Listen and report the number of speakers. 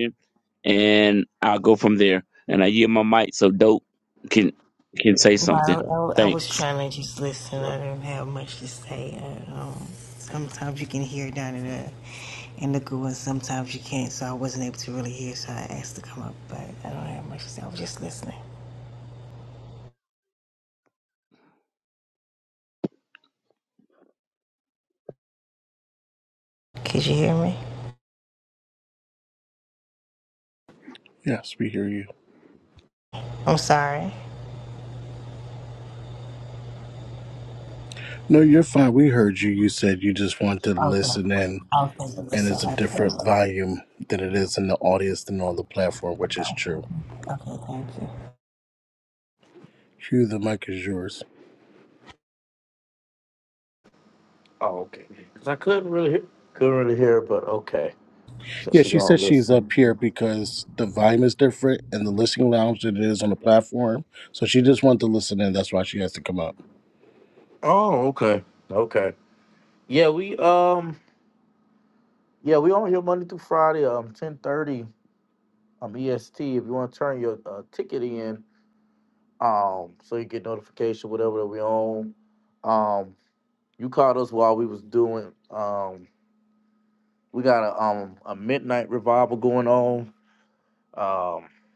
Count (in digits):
4